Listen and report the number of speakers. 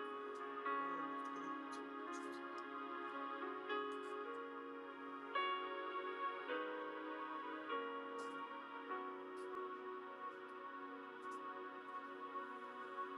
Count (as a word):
zero